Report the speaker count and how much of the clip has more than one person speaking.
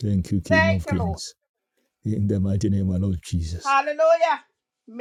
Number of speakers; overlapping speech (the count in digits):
2, about 14%